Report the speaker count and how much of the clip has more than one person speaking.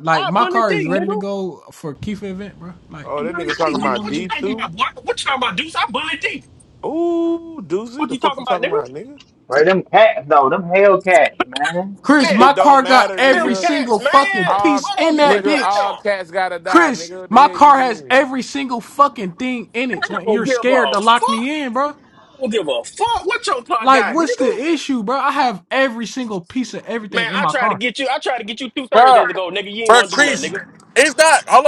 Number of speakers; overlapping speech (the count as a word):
five, about 40%